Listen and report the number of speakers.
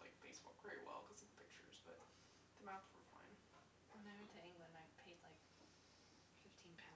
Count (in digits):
2